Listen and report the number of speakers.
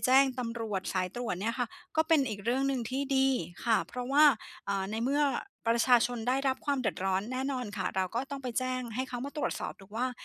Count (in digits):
1